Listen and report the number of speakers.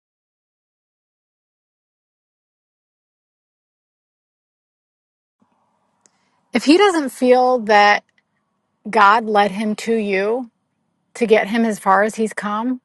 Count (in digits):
1